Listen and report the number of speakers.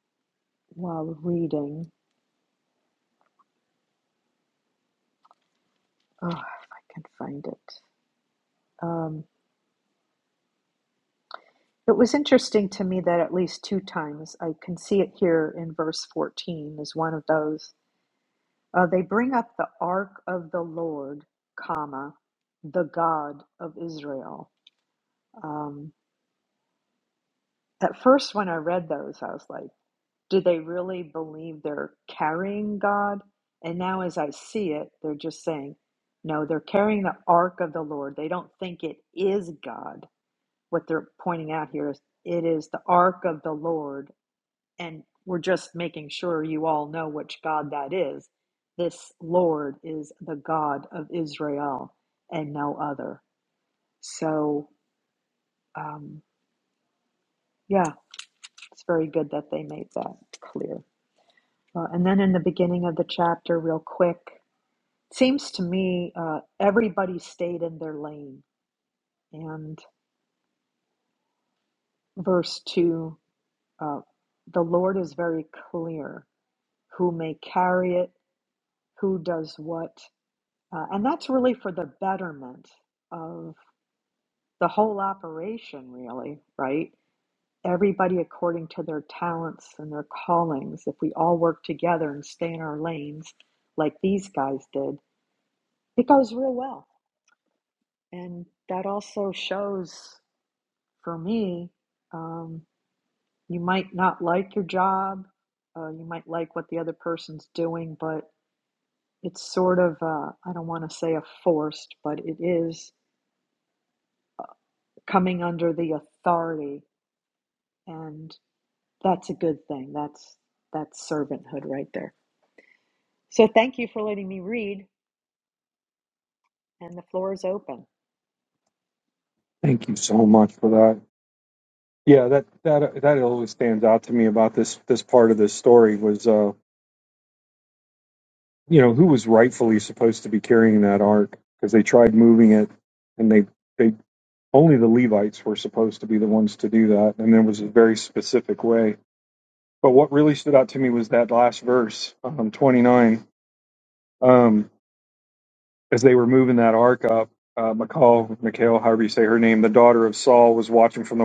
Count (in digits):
2